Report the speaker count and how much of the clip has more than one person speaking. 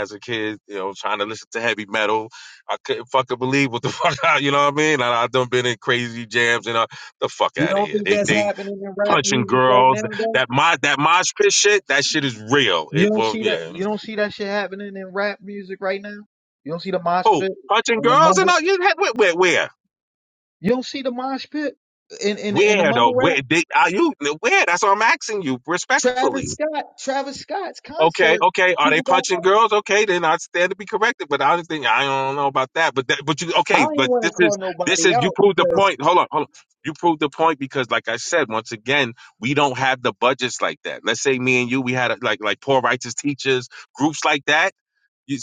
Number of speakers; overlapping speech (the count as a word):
two, about 19%